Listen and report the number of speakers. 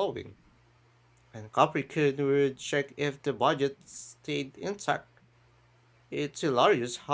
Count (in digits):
1